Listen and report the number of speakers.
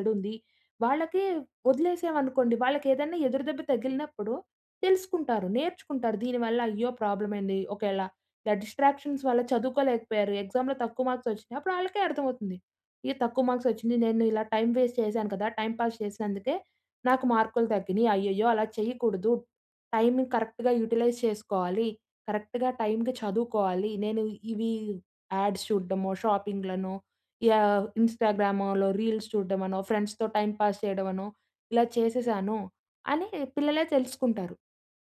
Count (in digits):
1